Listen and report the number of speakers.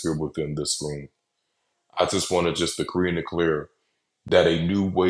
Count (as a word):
one